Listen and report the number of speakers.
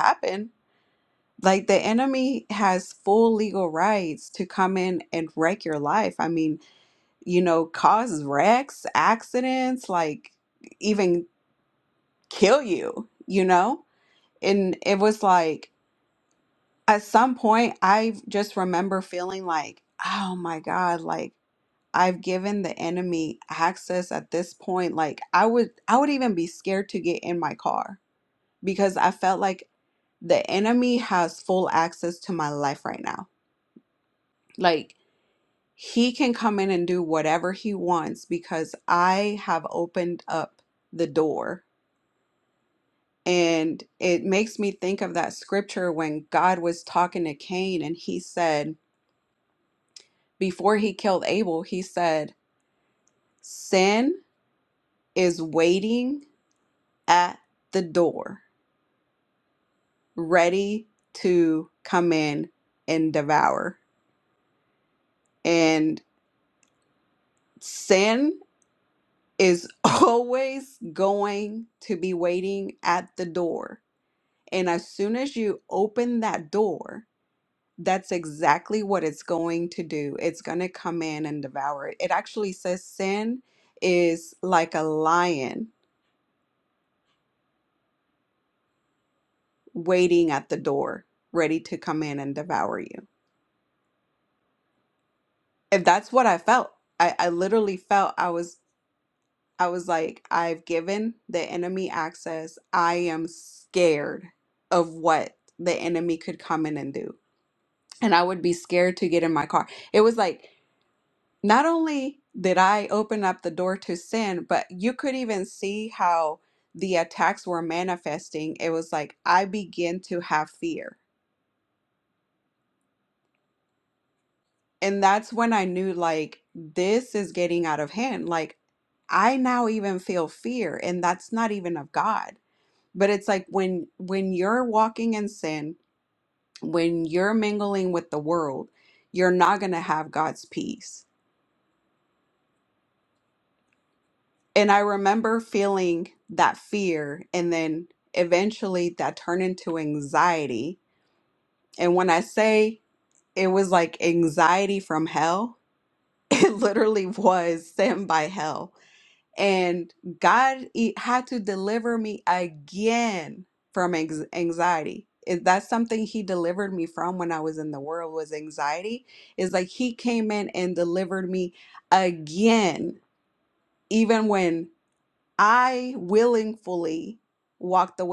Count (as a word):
one